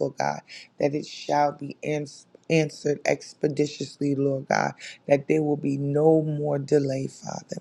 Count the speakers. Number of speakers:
one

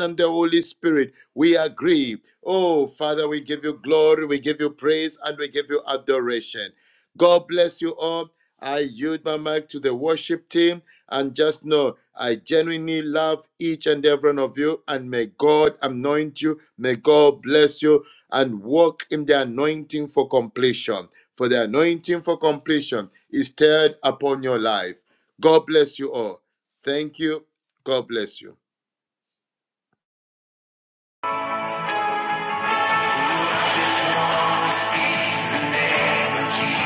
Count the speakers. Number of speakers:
two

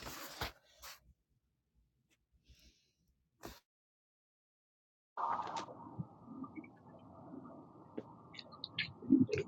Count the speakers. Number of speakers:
zero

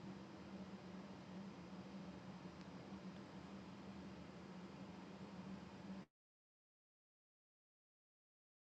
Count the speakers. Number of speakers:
zero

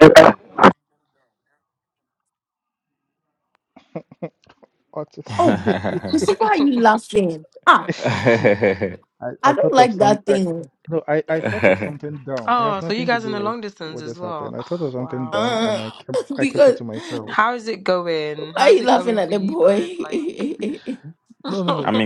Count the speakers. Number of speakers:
four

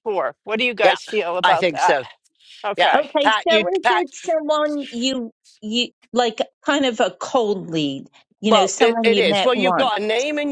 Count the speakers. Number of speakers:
three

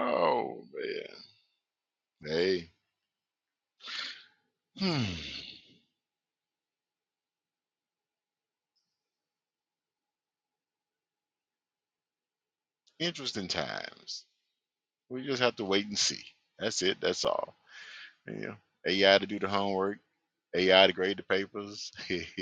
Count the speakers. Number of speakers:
one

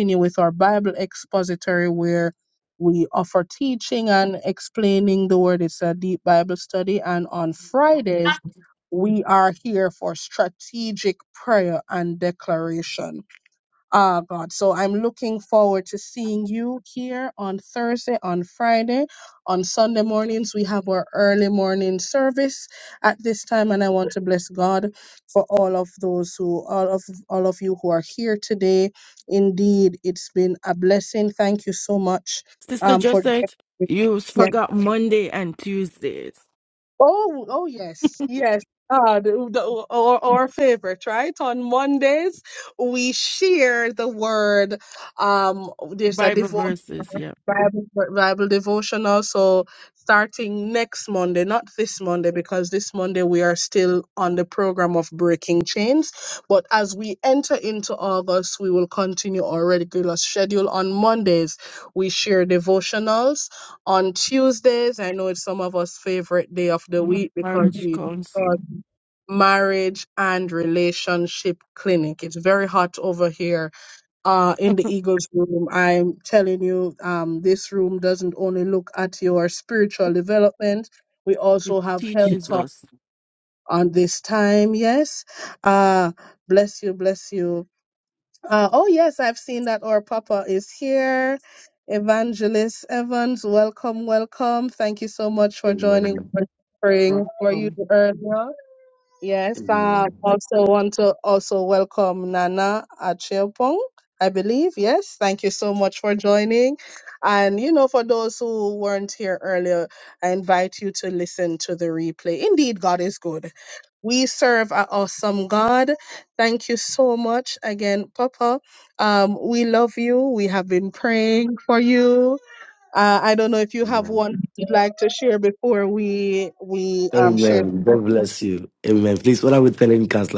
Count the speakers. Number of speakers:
three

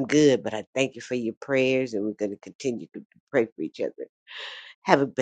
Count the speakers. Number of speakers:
one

